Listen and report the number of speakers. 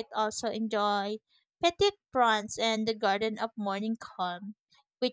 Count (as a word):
one